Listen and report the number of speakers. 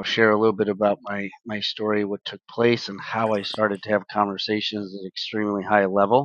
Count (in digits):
1